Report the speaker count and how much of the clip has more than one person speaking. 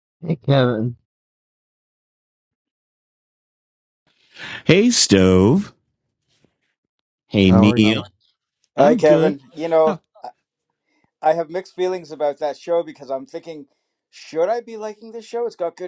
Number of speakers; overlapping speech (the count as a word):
three, about 8%